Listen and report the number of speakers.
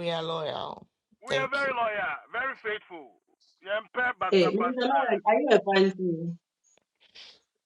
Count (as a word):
three